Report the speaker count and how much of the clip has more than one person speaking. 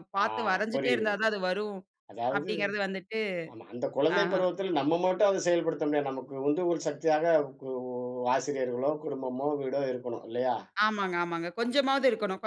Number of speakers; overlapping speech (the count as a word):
two, about 9%